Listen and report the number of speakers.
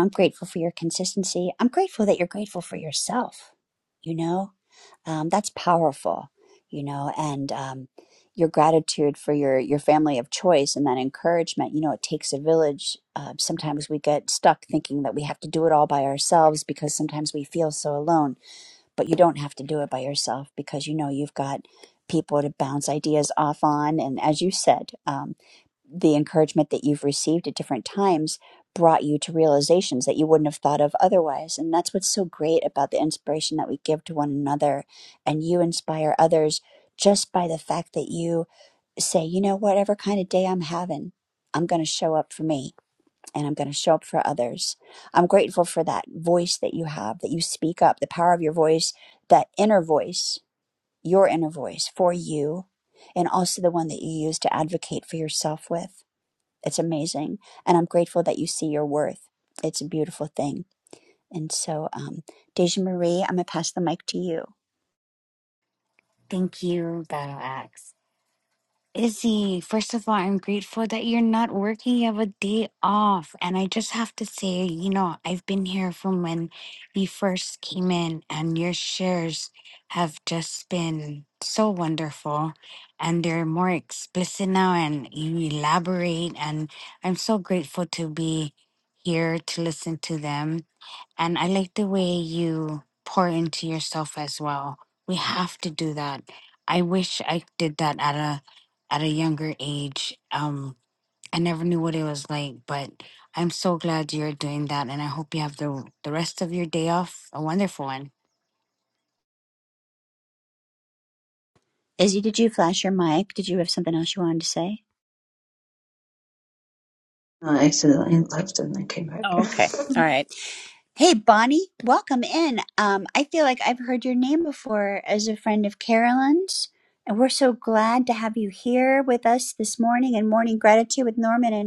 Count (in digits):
3